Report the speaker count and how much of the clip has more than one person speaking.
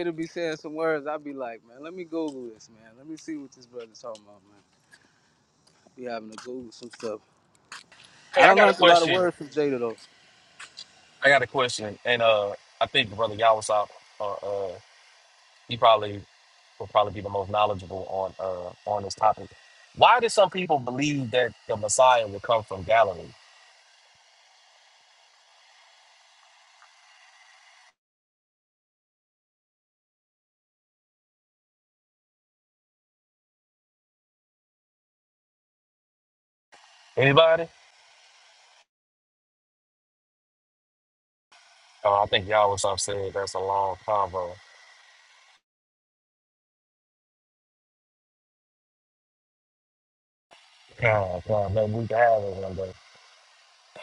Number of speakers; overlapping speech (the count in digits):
2, about 2%